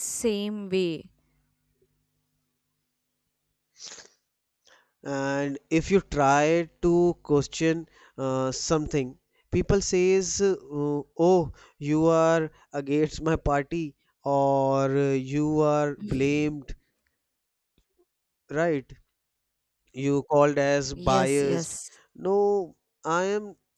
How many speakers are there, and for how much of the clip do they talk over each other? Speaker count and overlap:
two, about 3%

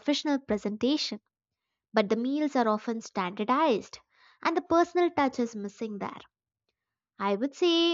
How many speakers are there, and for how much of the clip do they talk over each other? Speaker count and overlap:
one, no overlap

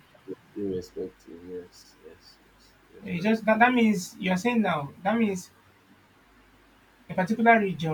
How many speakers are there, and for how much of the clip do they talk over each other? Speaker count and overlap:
two, about 10%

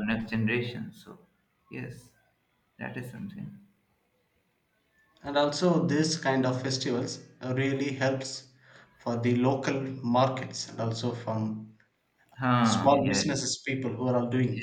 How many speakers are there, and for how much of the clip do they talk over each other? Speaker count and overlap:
two, about 5%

